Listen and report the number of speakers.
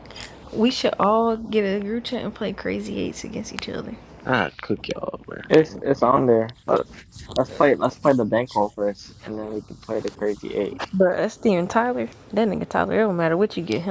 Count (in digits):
3